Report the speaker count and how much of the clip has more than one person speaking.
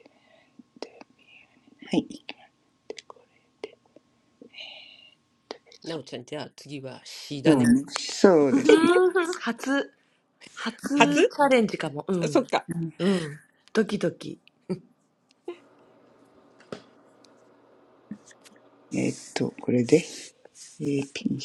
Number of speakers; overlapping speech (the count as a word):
three, about 4%